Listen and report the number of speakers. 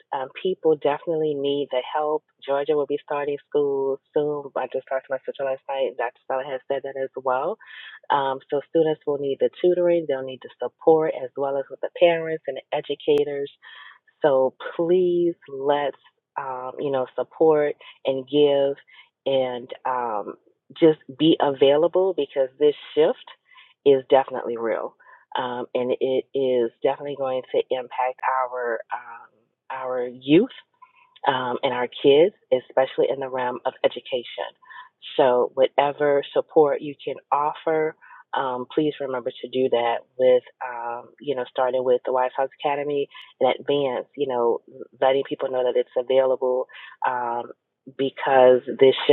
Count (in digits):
1